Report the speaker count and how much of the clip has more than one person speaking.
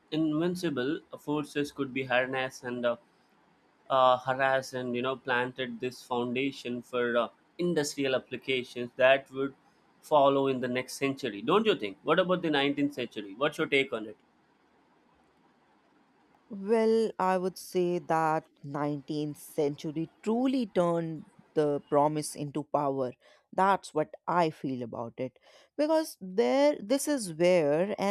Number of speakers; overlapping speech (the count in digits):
2, no overlap